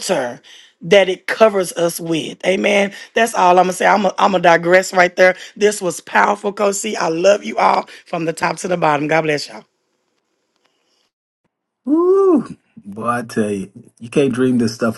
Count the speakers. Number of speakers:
2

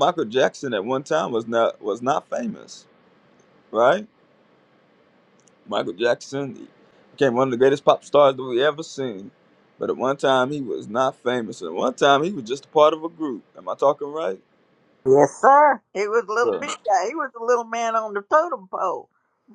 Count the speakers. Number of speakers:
2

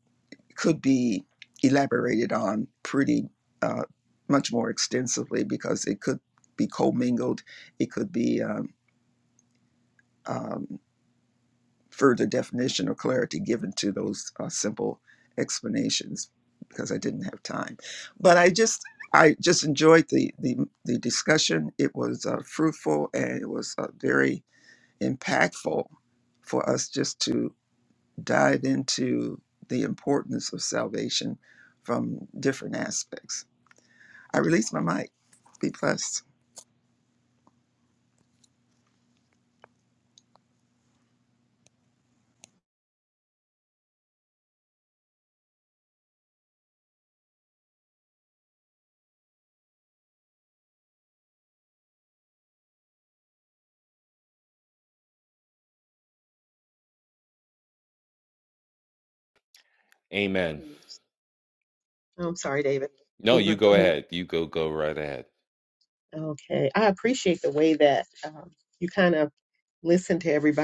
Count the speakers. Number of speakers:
3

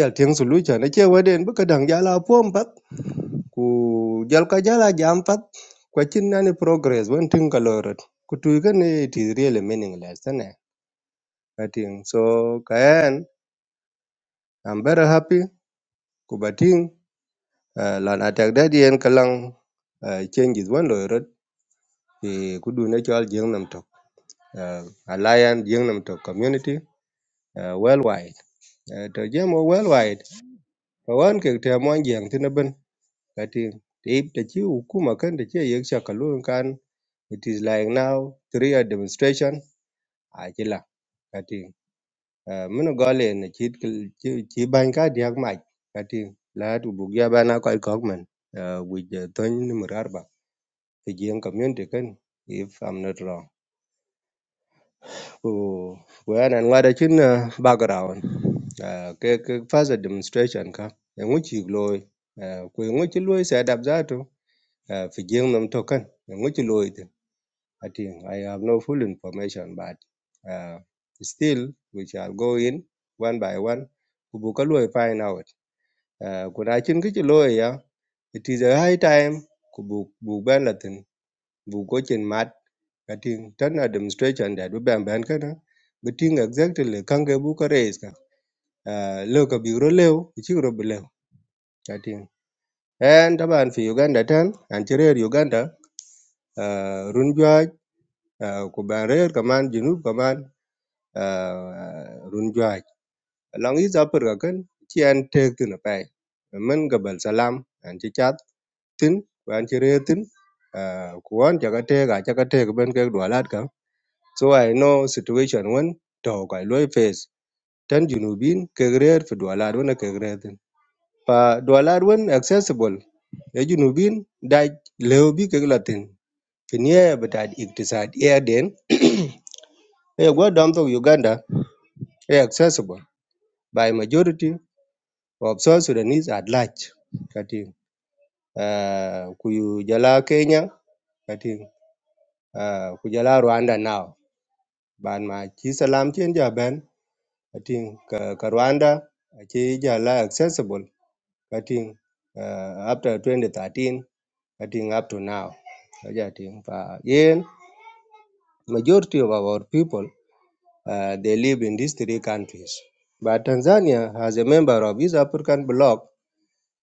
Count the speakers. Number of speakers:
1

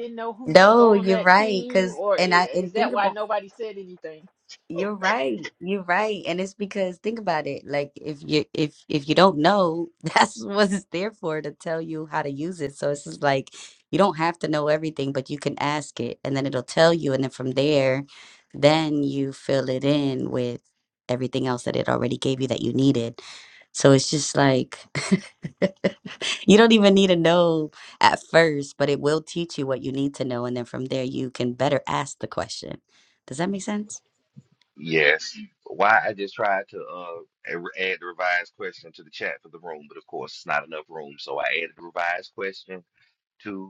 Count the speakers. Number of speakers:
3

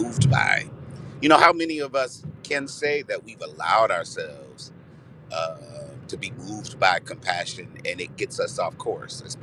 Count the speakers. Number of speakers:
1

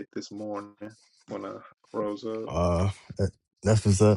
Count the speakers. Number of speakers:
2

